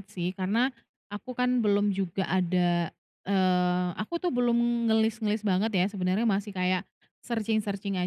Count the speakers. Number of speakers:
one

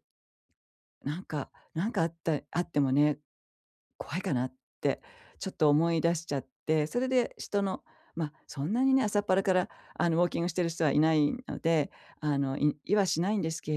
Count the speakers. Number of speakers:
one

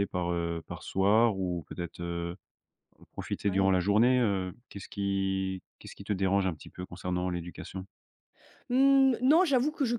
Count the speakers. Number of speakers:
two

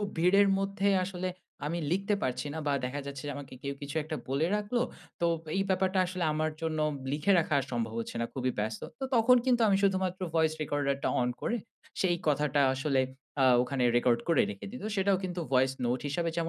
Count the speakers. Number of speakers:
one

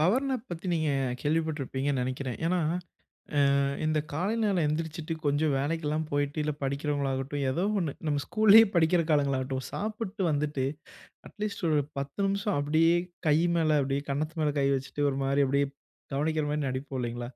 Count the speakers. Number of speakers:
one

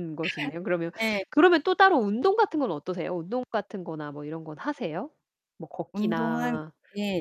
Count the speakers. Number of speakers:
two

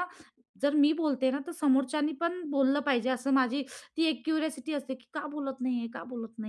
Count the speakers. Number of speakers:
one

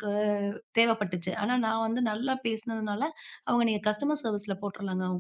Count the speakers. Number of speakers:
one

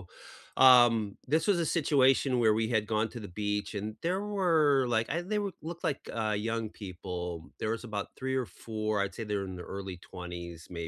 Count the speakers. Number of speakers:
one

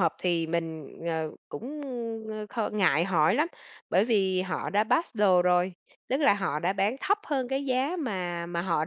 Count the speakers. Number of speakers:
one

